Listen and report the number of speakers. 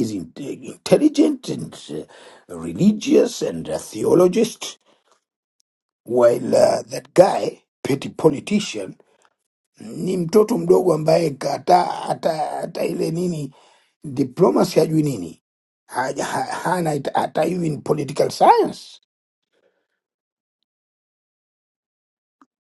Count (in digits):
1